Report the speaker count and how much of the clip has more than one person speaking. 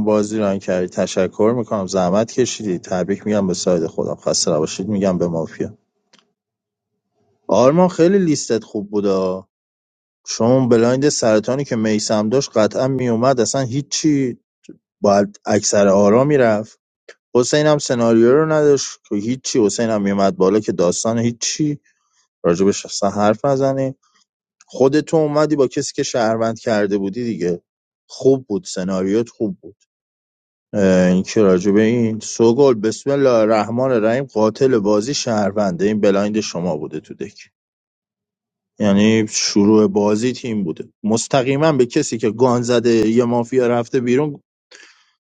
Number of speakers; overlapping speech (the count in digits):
1, no overlap